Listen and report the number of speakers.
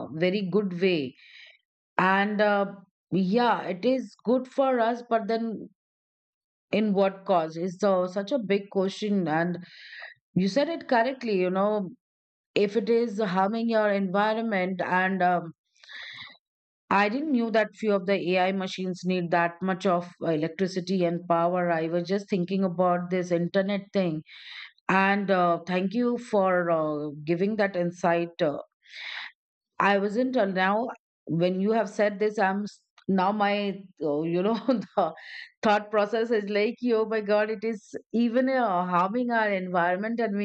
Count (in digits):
1